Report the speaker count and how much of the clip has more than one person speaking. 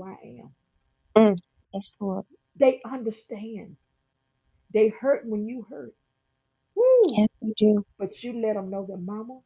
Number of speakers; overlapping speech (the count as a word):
two, about 1%